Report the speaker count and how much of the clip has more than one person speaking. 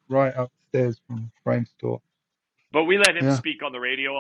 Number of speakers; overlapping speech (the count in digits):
2, about 5%